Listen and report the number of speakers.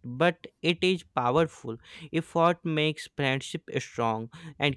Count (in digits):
1